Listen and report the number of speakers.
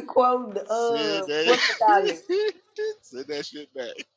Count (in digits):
2